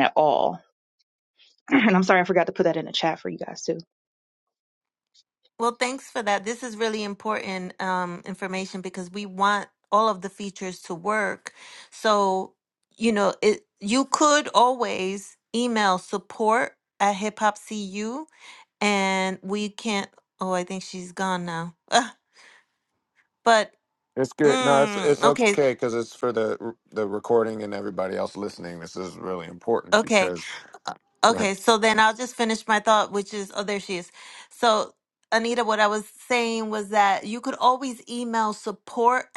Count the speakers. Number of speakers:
three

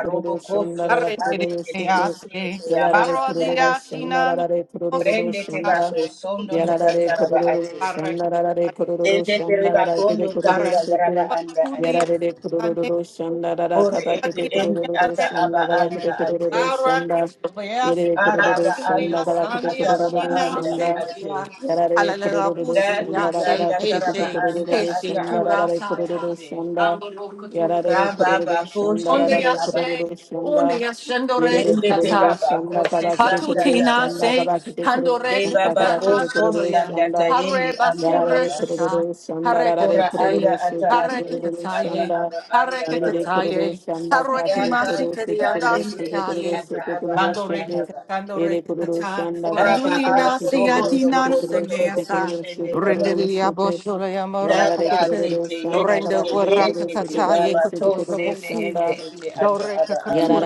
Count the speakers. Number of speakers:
three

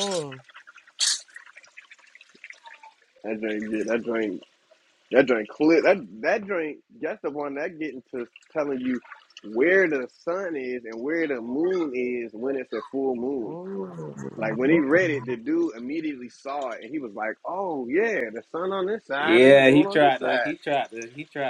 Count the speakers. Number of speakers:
three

